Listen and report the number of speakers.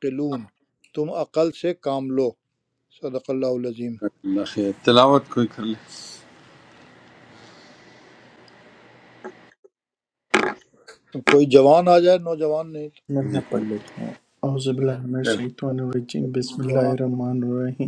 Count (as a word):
three